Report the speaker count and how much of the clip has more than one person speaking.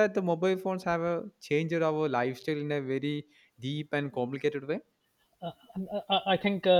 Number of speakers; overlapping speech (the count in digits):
2, no overlap